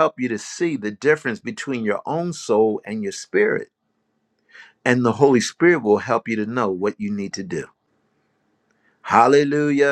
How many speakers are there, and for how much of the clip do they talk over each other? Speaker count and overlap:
one, no overlap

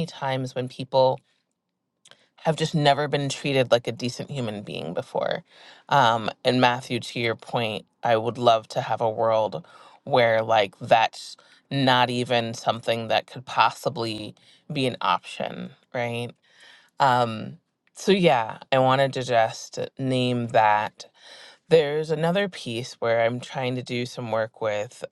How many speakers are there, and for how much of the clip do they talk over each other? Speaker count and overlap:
one, no overlap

